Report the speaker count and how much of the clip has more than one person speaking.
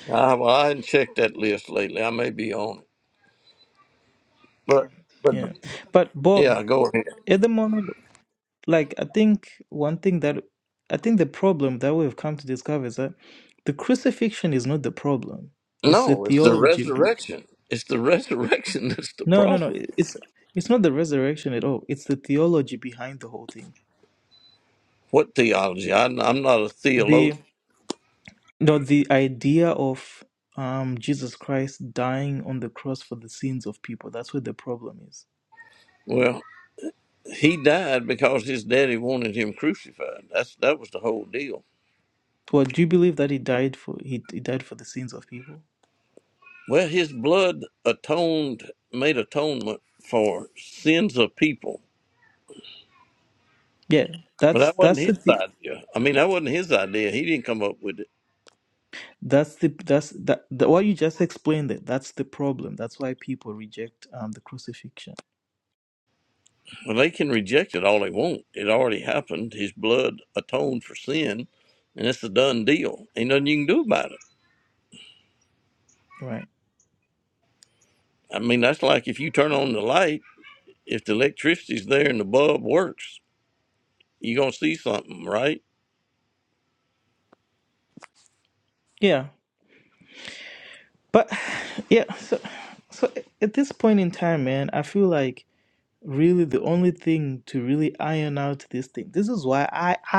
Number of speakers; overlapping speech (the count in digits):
2, about 3%